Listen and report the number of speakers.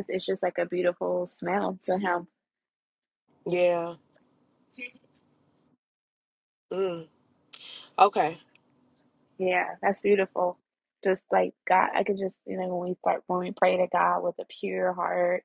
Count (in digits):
2